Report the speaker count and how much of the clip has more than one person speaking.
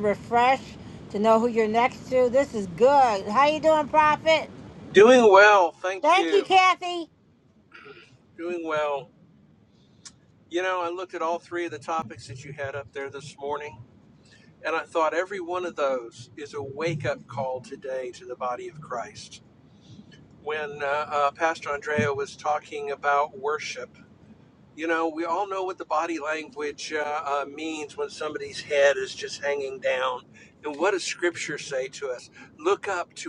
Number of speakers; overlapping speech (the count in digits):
2, about 1%